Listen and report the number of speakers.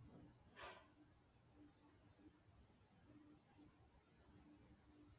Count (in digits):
0